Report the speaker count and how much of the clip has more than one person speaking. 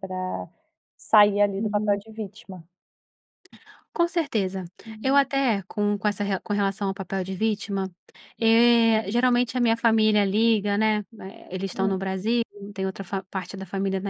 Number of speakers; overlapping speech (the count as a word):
two, about 5%